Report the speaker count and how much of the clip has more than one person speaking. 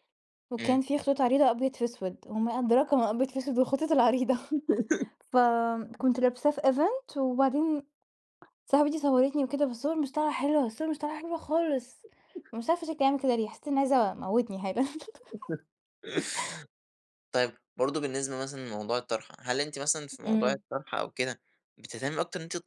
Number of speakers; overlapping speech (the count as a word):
two, about 2%